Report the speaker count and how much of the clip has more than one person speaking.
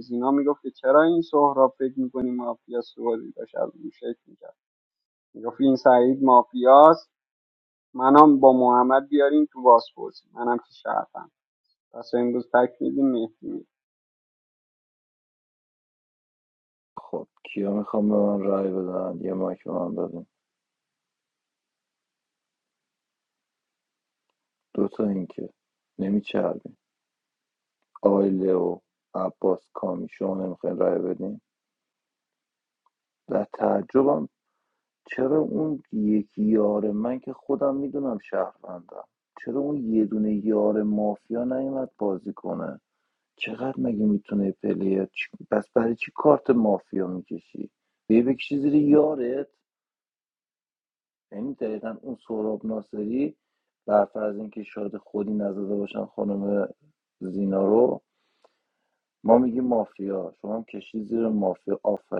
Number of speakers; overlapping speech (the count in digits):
2, no overlap